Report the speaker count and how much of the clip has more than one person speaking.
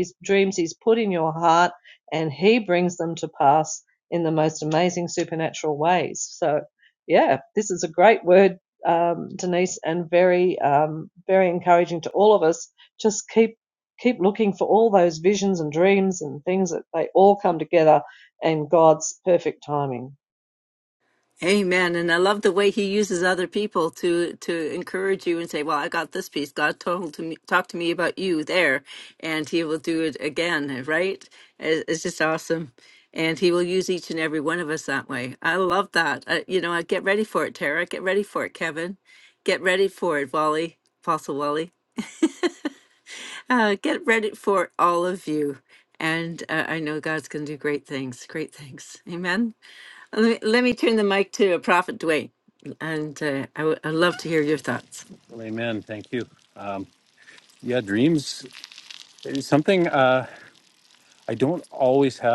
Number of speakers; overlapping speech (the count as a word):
three, no overlap